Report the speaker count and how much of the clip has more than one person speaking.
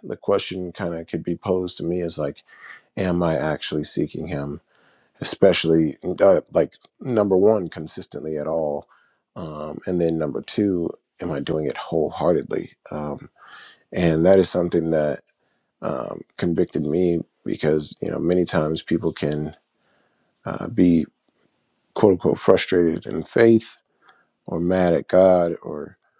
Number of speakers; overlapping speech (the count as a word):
one, no overlap